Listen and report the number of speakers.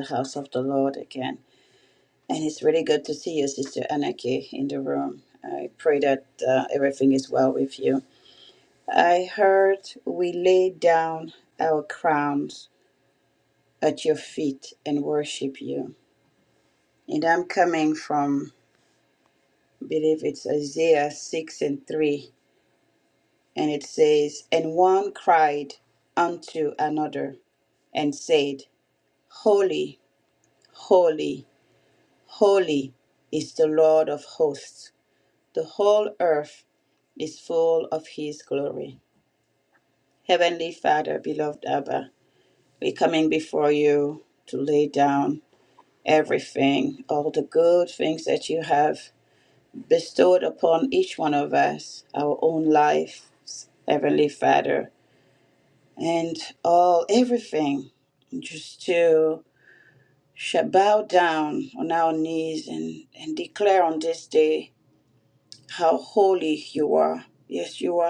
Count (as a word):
one